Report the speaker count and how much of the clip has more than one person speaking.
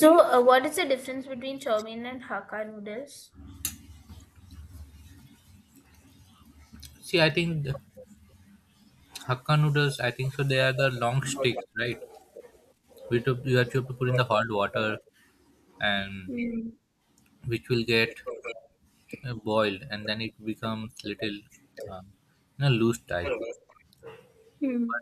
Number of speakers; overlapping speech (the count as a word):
two, no overlap